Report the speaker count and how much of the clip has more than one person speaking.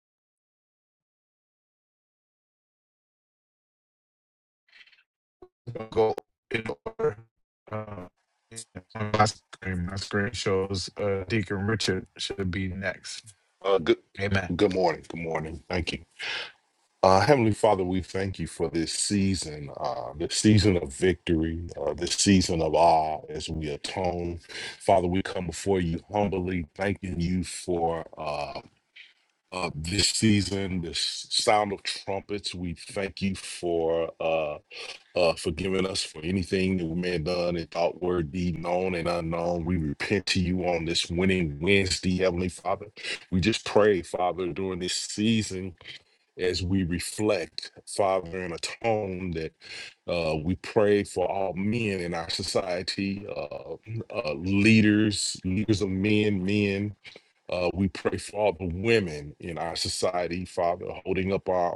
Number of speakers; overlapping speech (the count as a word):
two, no overlap